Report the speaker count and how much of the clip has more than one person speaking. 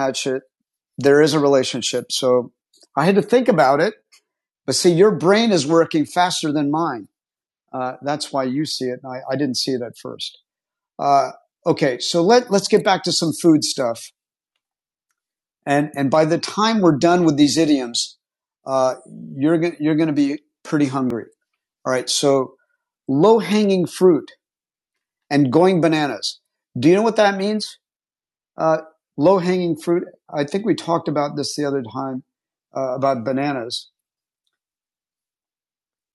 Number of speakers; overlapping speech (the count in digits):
1, no overlap